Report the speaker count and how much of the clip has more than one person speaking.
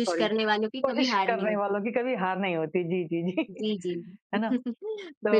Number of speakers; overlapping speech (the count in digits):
2, about 29%